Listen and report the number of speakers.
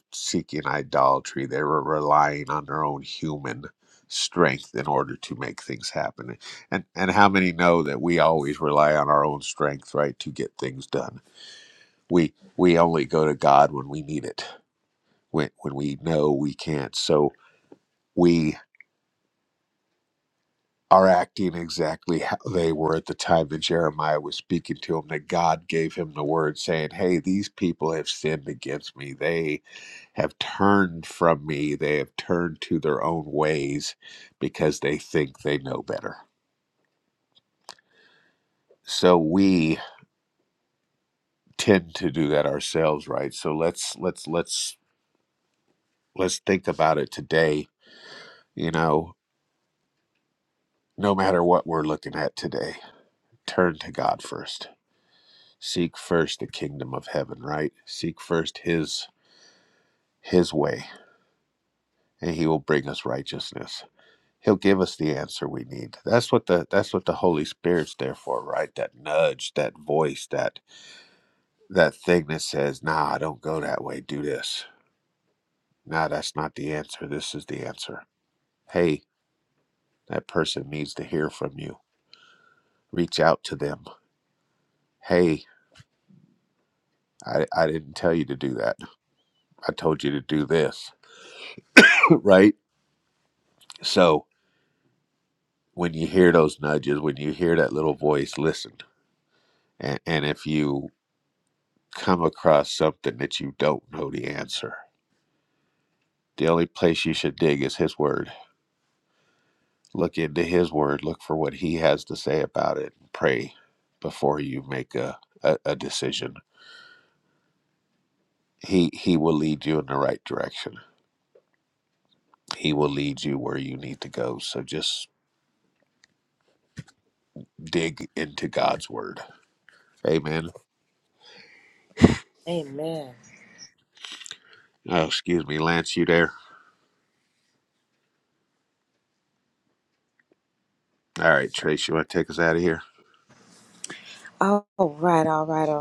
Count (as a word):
two